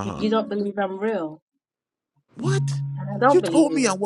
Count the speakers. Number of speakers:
2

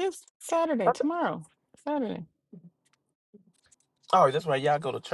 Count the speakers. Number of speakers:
2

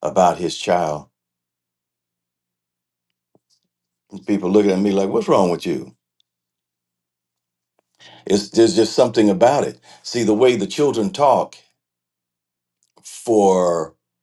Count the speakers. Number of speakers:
1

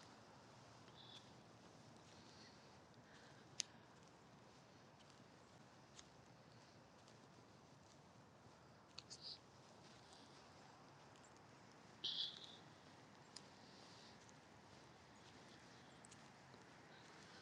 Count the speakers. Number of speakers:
0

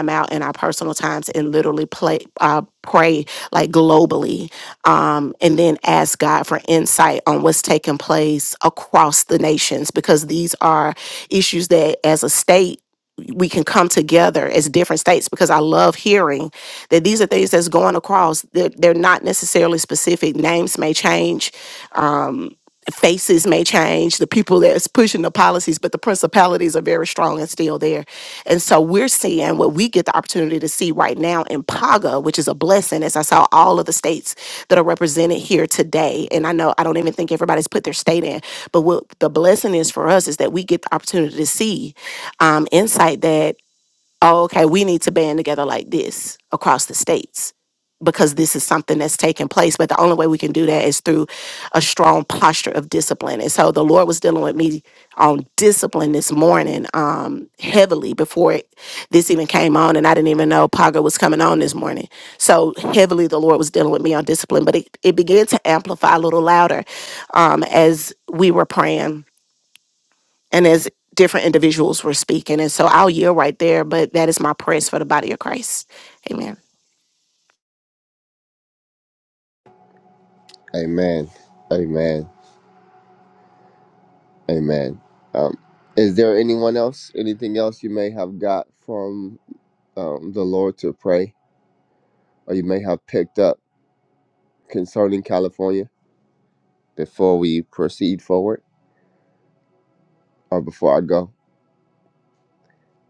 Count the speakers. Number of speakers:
2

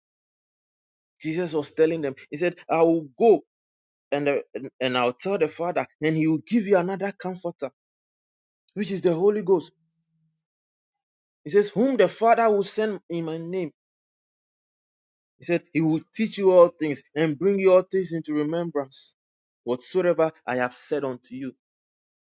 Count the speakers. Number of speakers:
1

